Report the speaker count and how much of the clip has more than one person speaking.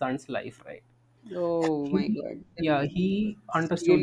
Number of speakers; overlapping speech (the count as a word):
two, about 24%